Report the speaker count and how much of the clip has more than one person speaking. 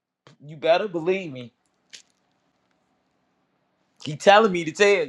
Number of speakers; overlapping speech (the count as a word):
one, no overlap